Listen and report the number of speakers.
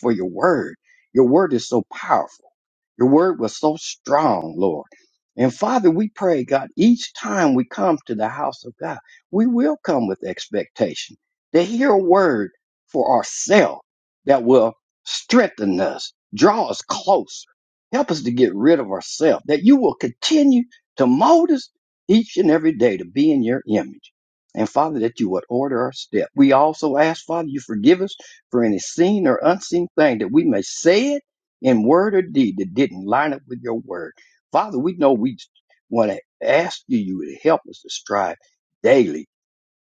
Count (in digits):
1